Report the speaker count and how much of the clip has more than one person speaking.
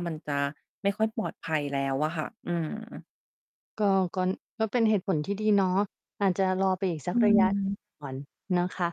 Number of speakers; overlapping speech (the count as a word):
two, about 1%